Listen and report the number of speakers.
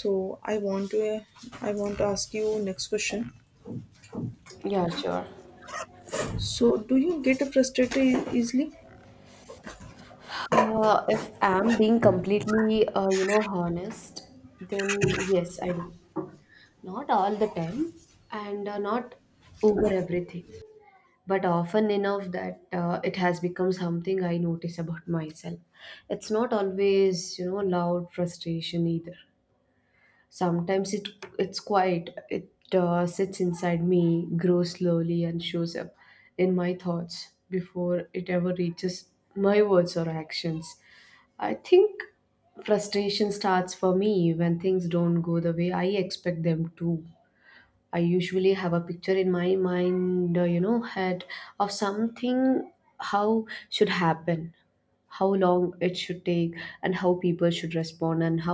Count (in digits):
2